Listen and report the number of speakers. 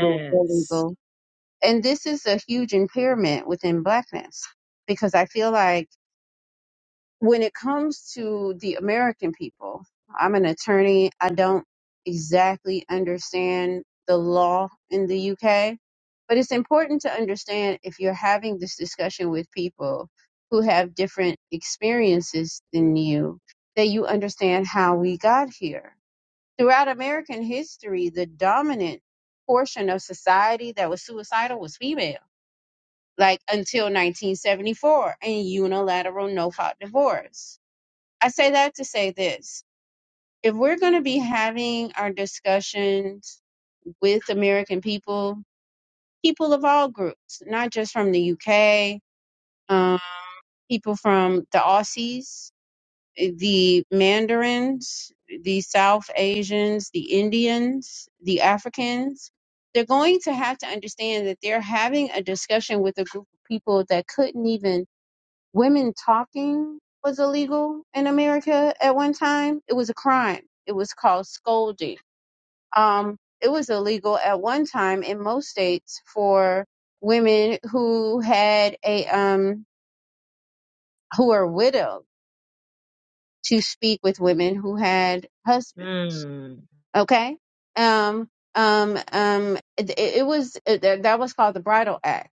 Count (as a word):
two